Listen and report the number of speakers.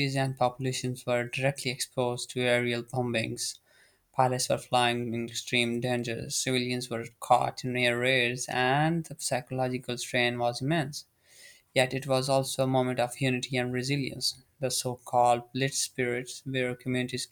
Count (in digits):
1